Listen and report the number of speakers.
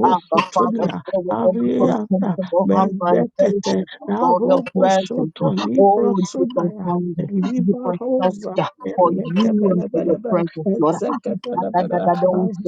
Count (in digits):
2